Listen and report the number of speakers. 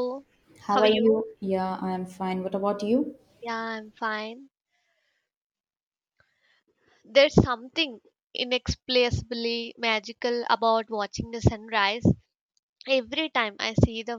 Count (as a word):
two